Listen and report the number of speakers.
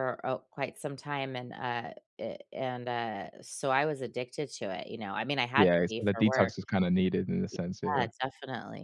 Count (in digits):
2